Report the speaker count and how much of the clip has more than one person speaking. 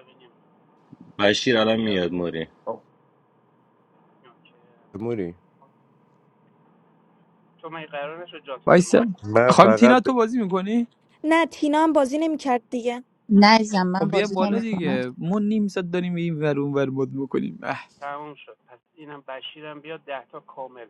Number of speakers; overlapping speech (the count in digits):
6, about 14%